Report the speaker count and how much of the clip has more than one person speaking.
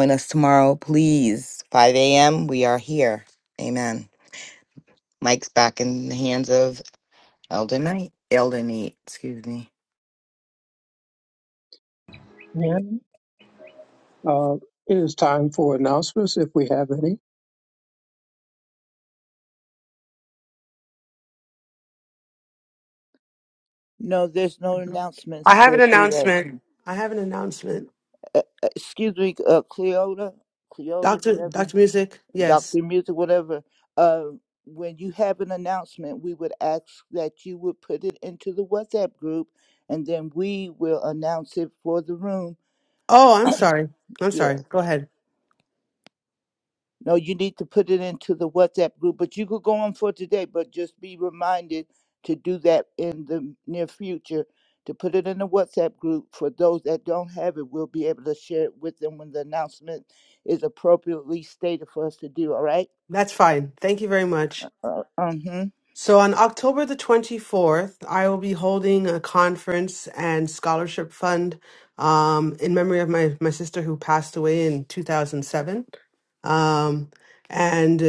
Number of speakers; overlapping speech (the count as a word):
four, about 3%